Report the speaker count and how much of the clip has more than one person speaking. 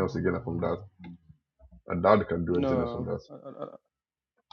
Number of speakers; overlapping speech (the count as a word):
two, about 15%